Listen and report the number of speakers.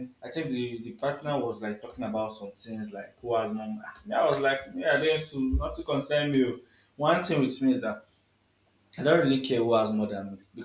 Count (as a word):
one